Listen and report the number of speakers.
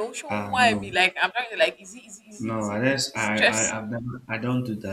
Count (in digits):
2